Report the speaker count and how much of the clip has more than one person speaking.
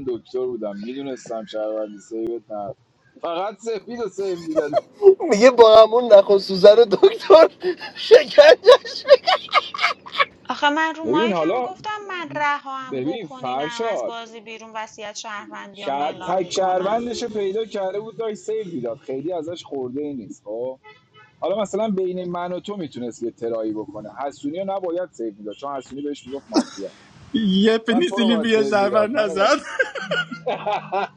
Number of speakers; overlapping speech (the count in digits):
4, about 15%